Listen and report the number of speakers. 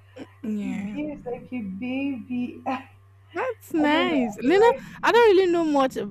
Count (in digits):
2